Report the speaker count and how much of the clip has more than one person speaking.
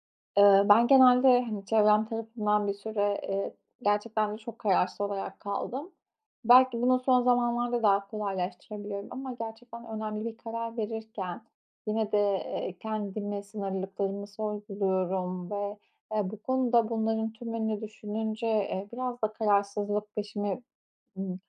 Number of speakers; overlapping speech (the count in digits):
1, no overlap